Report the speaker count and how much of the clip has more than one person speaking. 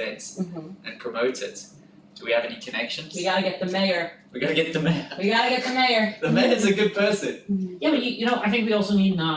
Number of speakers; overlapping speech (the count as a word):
three, about 2%